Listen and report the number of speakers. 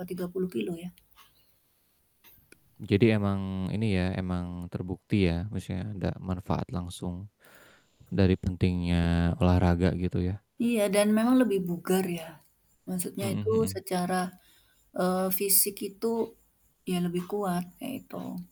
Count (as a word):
two